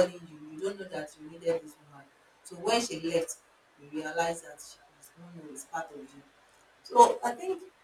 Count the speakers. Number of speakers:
1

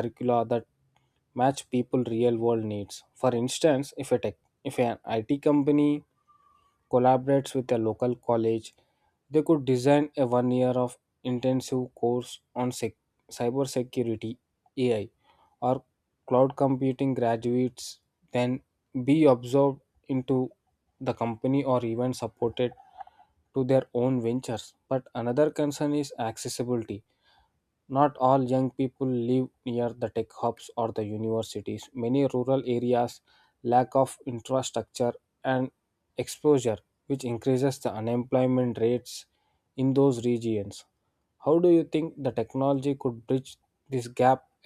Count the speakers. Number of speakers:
1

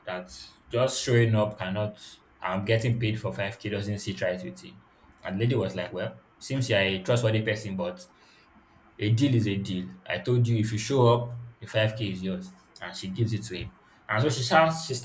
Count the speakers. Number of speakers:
1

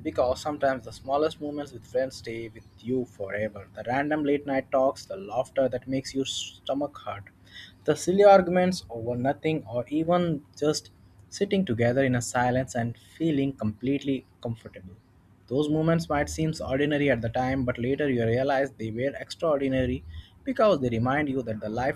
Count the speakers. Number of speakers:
1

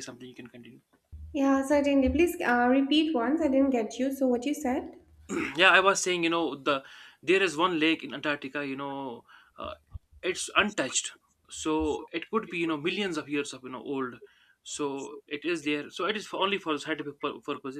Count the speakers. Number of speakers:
2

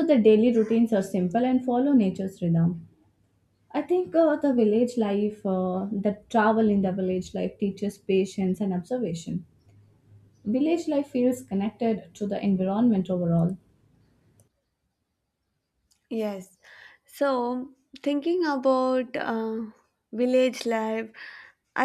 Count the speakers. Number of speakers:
2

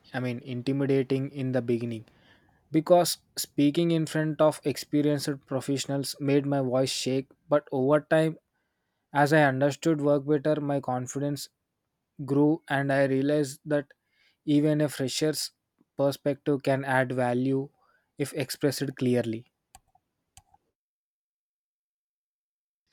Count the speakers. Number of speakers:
1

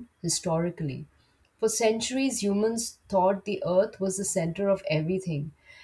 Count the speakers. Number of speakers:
1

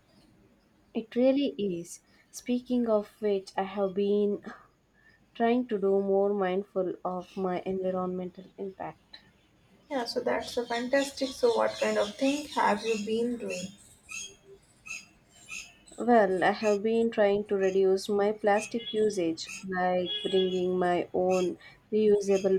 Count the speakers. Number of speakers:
2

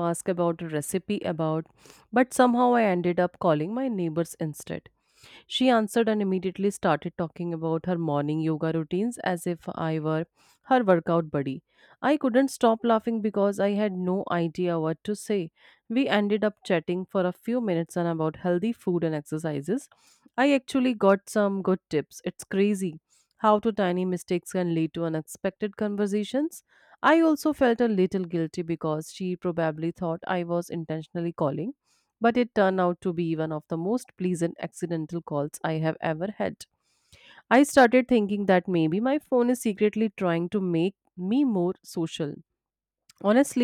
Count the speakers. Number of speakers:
1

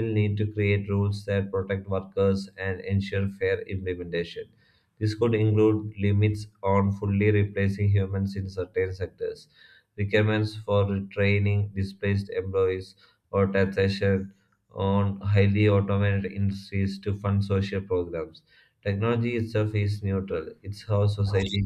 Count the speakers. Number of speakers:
1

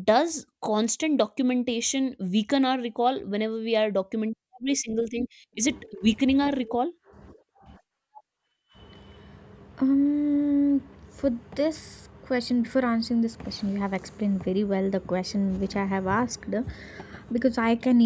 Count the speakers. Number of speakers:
2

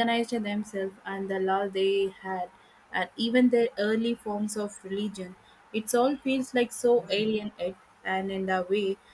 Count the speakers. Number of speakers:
1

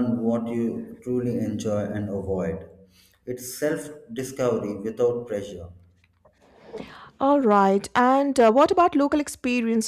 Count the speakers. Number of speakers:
2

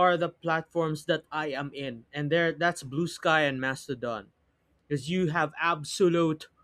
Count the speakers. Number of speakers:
1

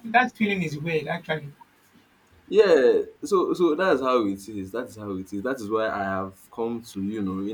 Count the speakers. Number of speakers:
2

